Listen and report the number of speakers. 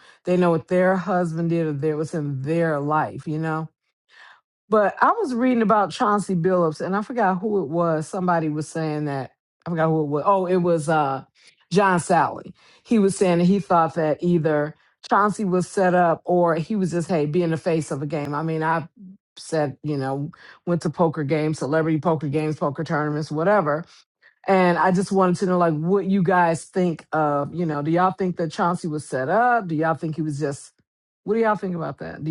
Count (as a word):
one